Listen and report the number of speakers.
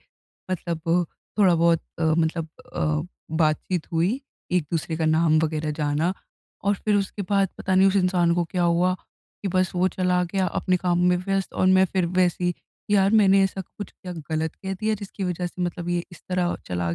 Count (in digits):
1